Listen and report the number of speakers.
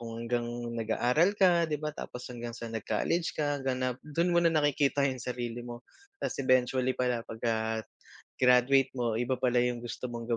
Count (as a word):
one